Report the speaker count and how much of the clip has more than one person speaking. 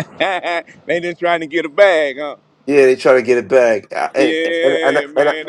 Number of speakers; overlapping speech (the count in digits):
2, about 11%